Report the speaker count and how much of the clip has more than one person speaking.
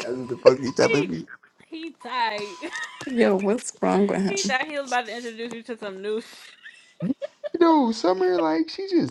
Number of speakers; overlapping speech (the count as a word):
three, about 6%